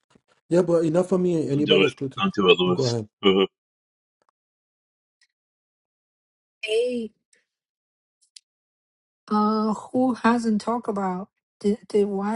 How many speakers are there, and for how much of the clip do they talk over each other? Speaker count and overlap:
3, about 7%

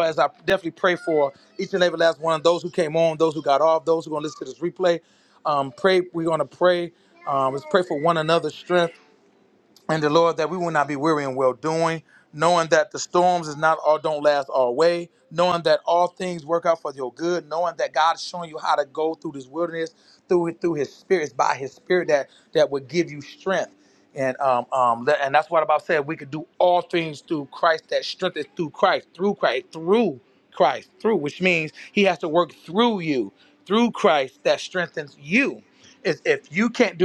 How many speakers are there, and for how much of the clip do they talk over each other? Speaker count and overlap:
1, no overlap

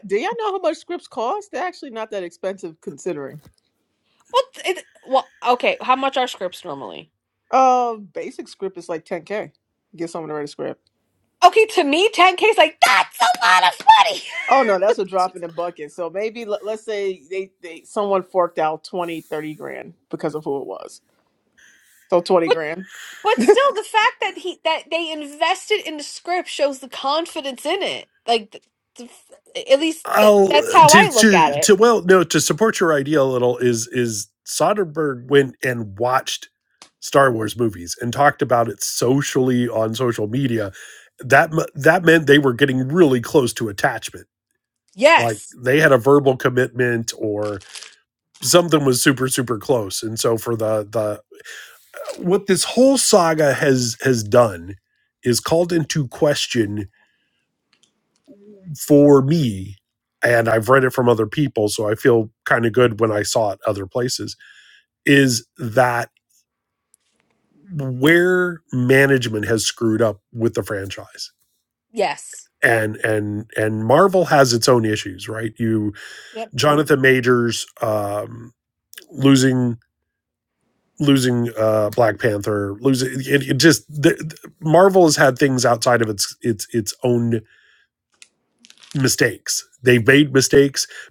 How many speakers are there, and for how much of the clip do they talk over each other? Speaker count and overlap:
3, about 2%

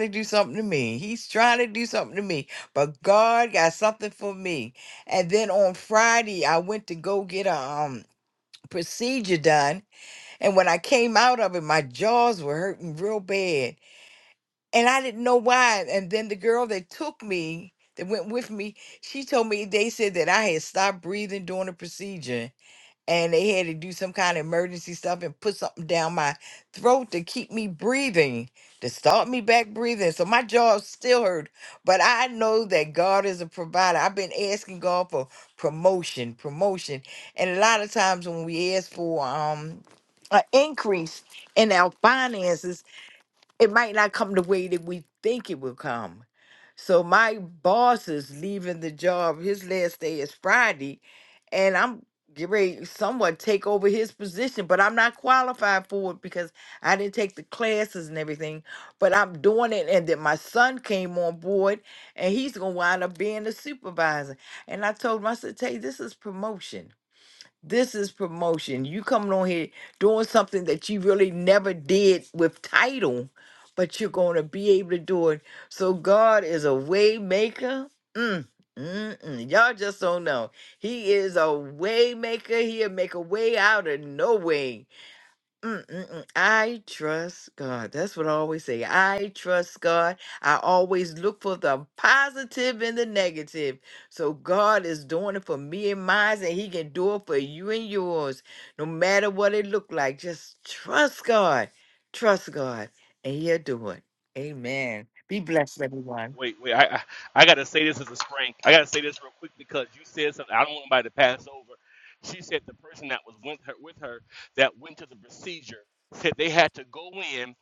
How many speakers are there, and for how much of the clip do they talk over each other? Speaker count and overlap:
2, no overlap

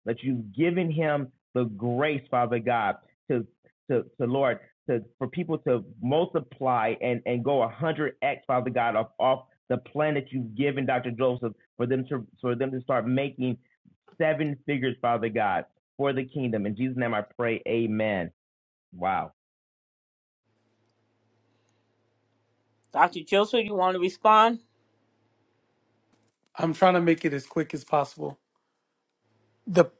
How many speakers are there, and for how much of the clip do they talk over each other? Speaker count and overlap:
3, no overlap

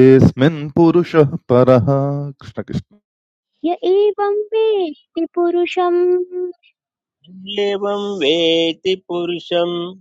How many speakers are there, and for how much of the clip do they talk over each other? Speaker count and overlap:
3, no overlap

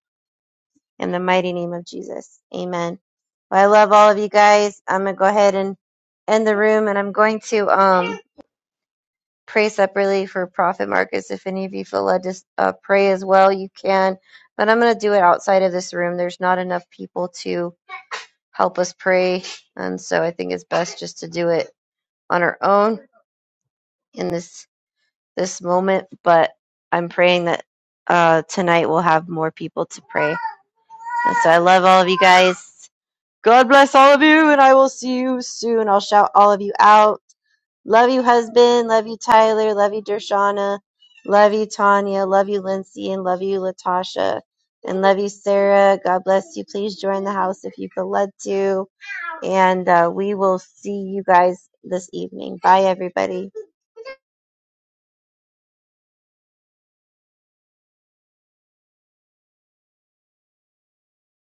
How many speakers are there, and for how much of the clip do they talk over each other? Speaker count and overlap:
1, no overlap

